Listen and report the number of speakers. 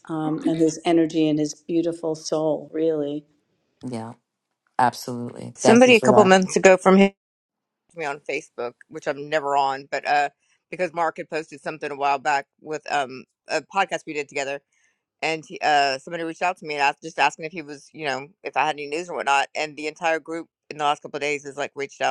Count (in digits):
3